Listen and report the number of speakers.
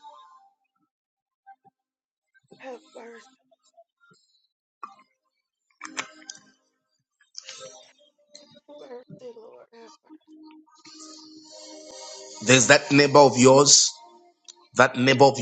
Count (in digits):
2